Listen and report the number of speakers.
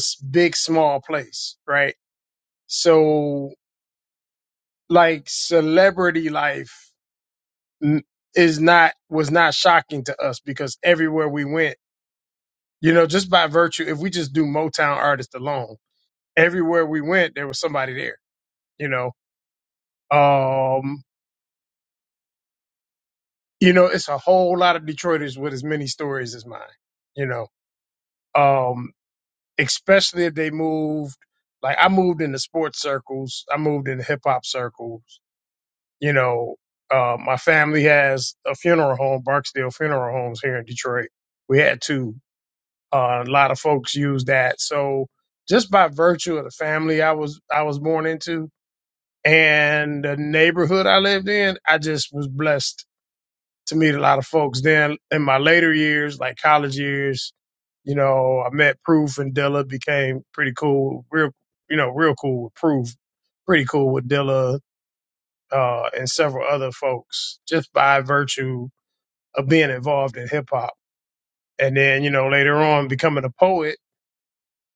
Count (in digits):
1